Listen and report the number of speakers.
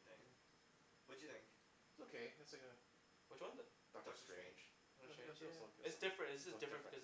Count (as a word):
three